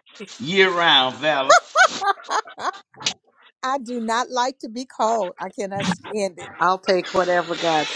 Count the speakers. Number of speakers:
three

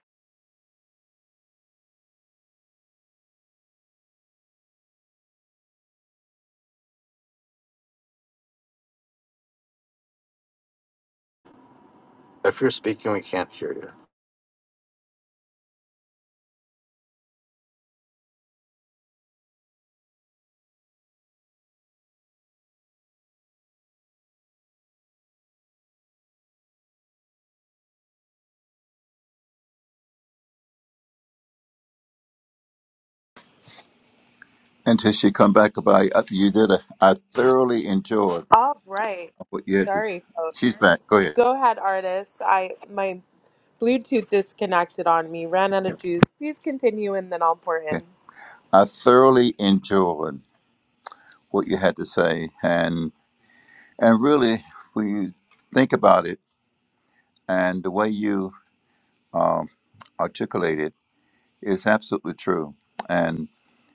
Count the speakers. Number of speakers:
three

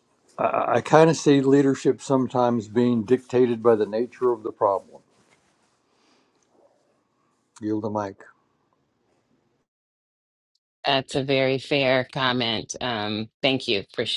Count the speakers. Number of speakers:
two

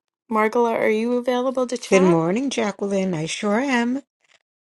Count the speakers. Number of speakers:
two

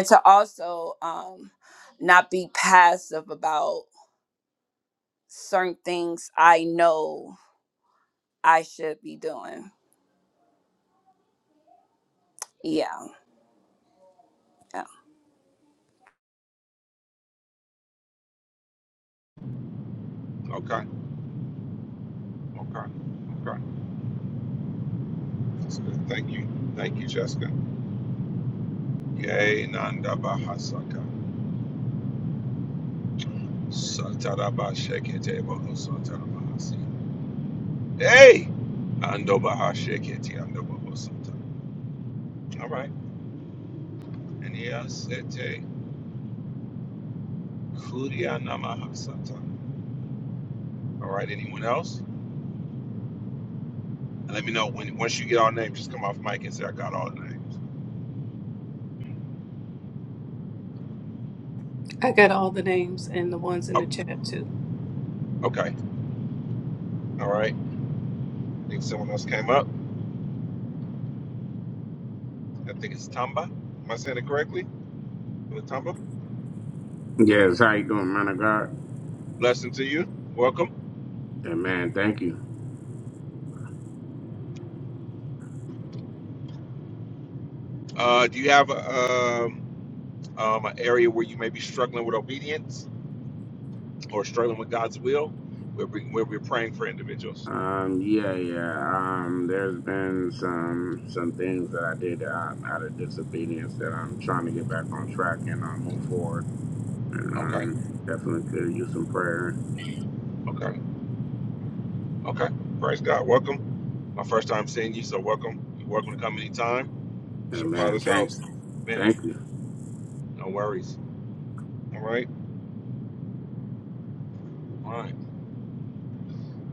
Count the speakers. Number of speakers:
four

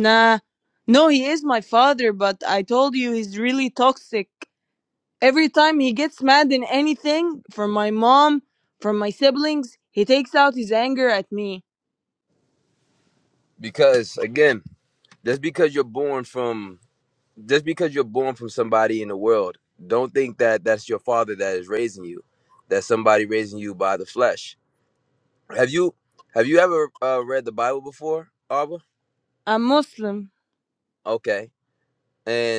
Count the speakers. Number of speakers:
two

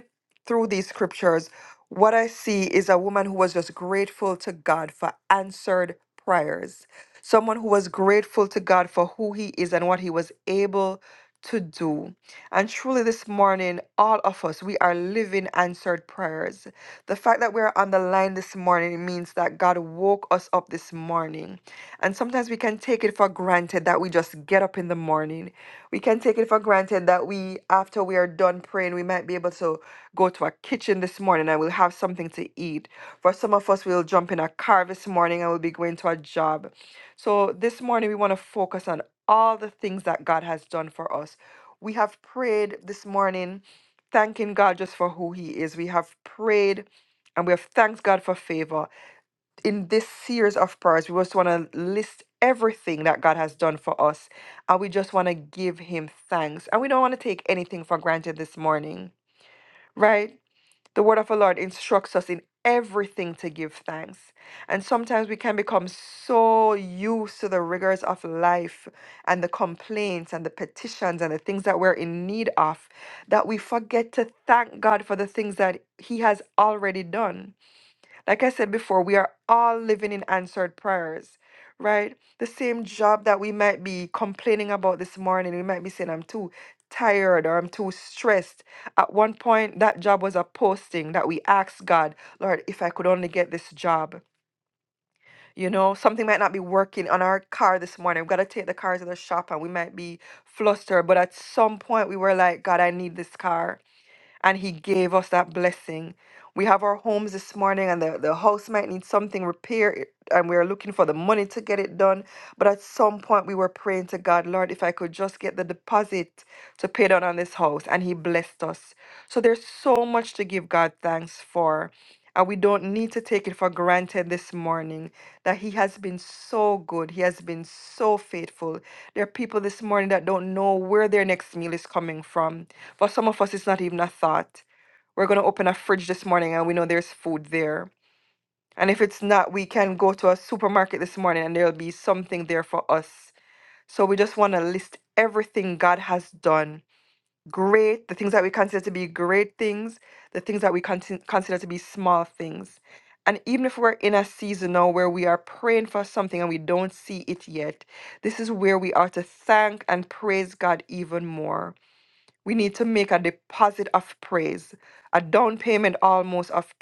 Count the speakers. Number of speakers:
one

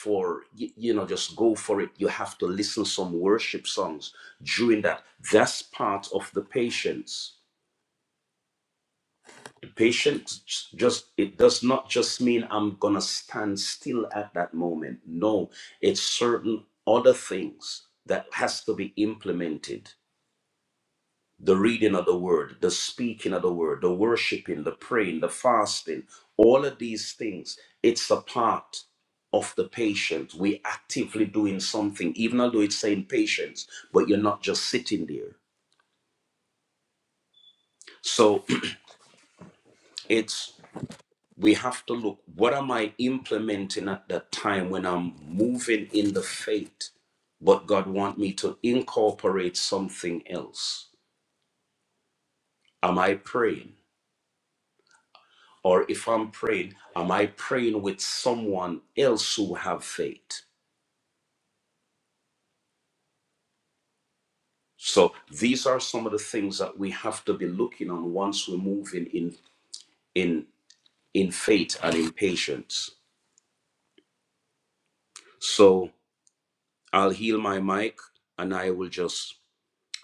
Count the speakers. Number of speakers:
one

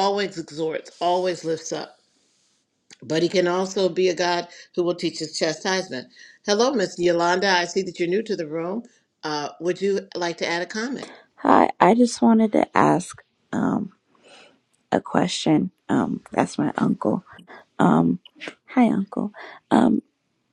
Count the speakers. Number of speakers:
two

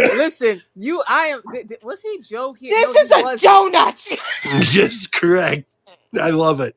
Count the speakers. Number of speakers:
three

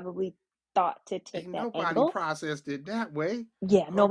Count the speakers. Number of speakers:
two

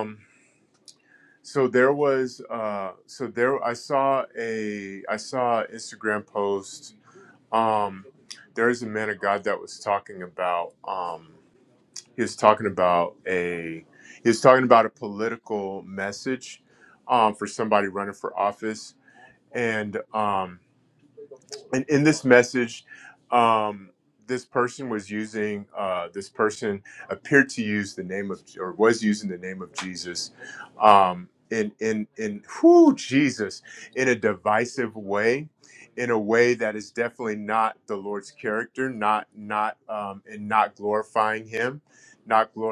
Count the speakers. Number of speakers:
one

